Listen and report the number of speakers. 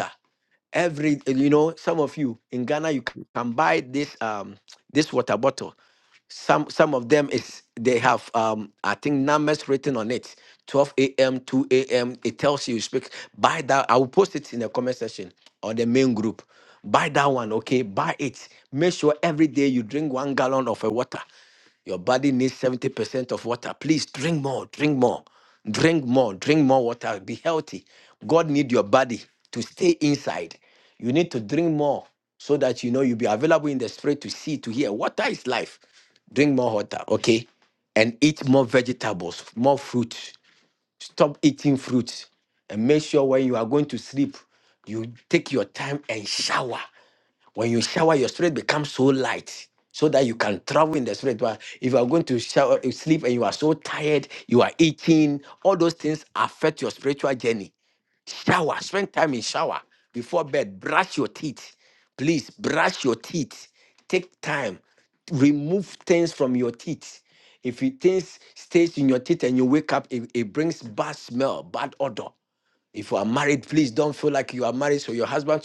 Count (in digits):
1